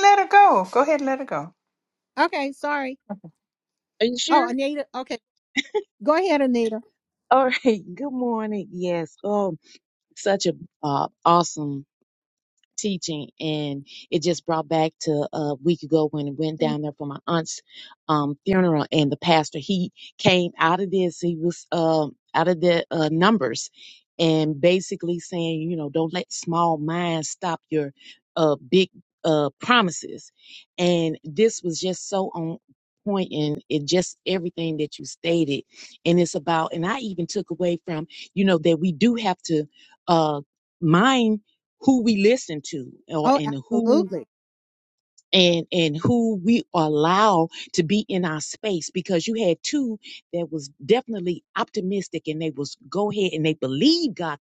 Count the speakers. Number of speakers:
3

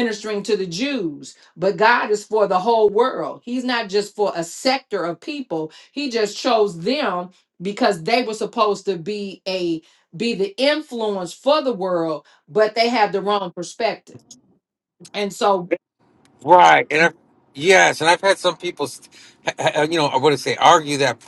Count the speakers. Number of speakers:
2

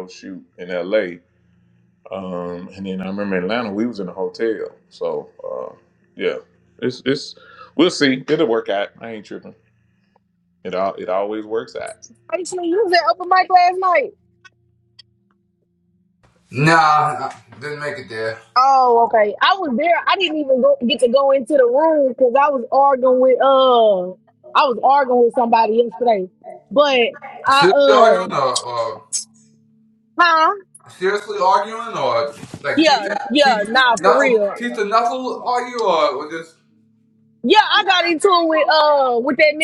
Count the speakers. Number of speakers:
3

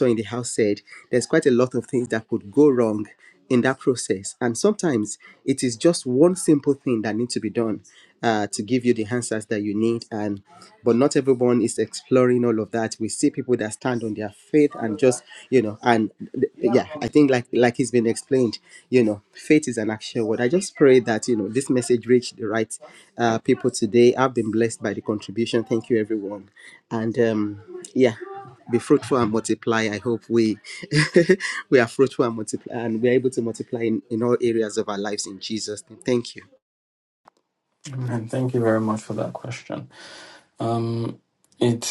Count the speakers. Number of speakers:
2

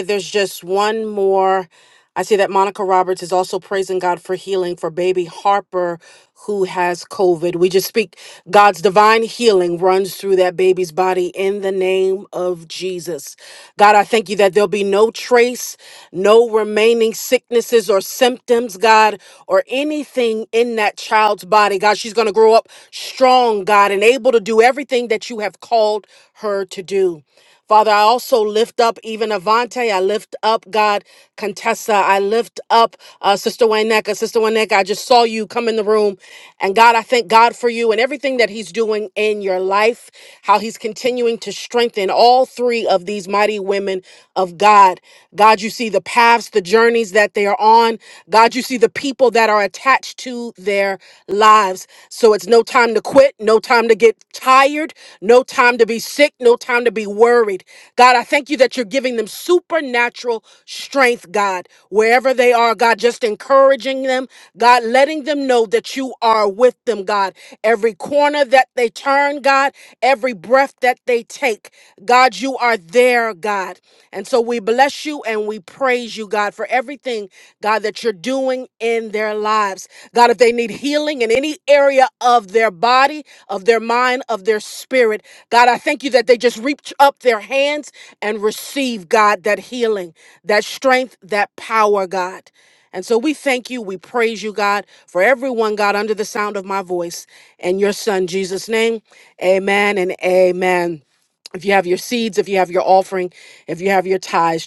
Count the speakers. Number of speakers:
1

